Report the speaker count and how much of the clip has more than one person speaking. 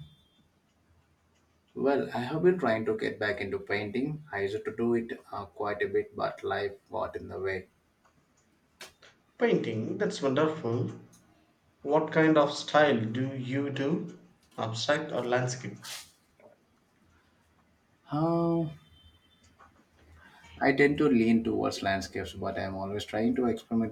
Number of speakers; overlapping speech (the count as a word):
two, no overlap